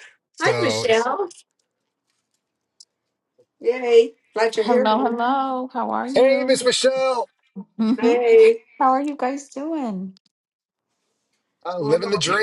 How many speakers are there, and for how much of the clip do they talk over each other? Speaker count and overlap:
3, about 18%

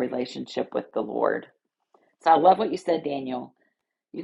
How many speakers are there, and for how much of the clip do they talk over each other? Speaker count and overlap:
1, no overlap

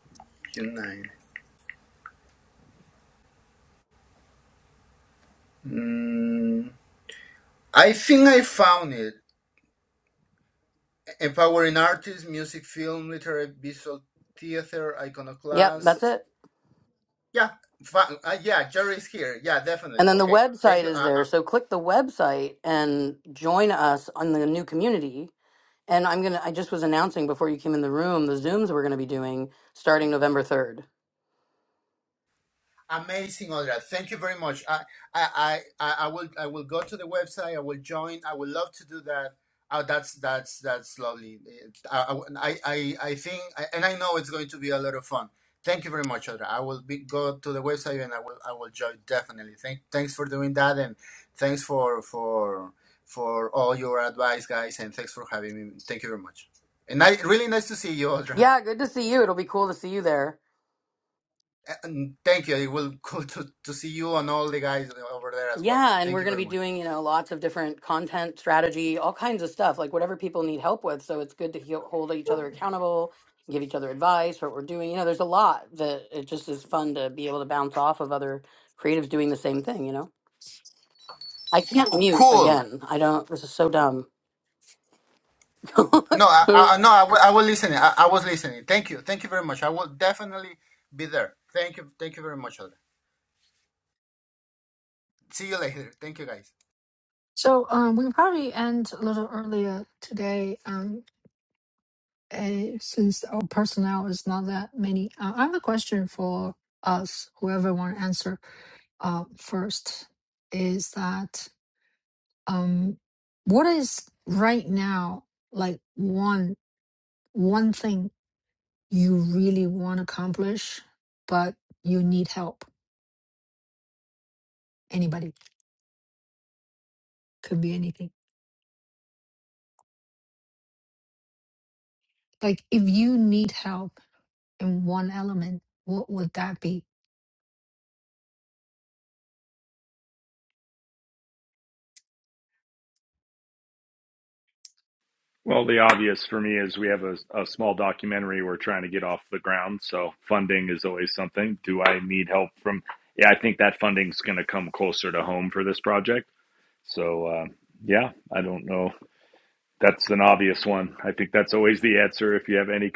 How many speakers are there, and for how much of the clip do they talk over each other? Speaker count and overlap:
4, about 2%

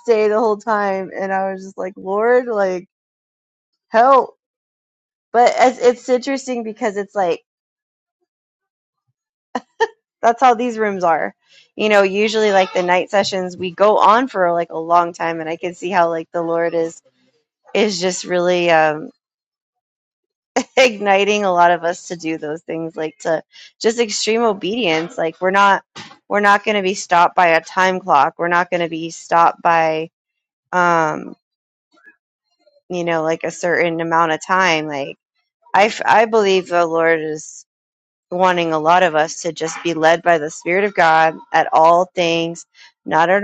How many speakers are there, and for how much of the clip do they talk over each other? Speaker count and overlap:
1, no overlap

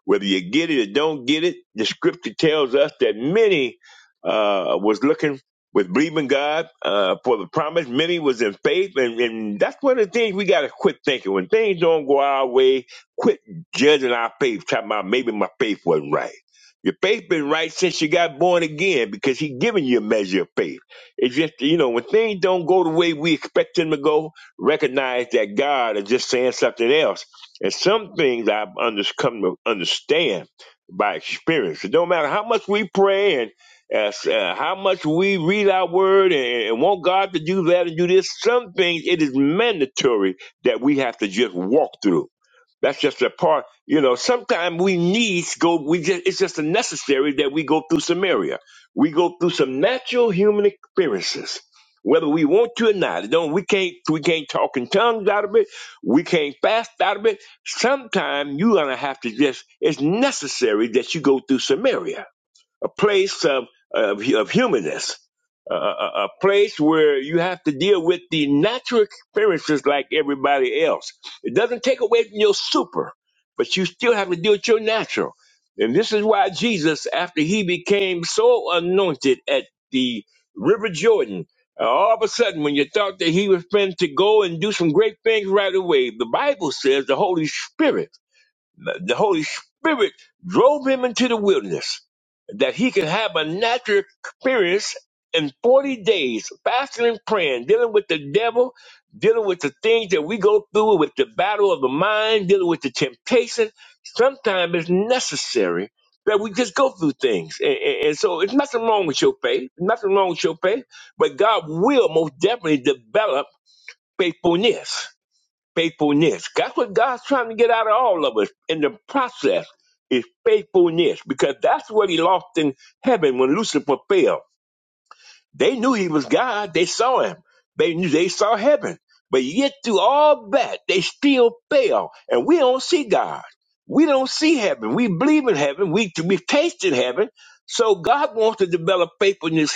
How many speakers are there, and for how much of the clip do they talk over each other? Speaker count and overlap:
1, no overlap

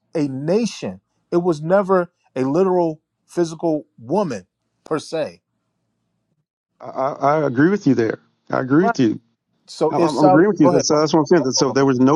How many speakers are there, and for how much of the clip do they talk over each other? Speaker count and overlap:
2, about 18%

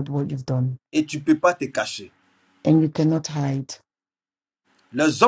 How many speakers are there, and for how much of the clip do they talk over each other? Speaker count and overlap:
2, no overlap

